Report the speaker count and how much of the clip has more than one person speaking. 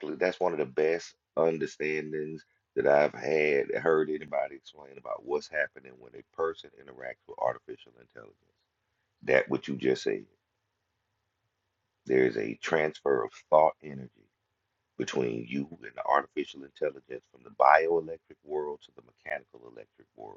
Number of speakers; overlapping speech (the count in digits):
1, no overlap